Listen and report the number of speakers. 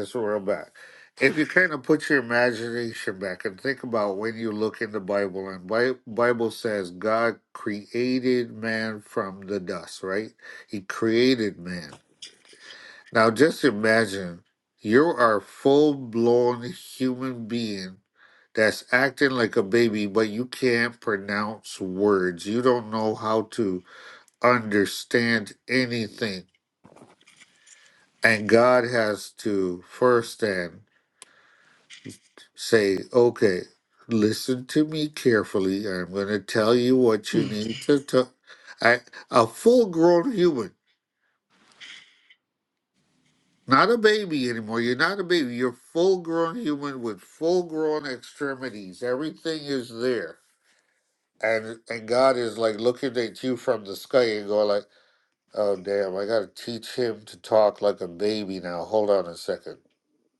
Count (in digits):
1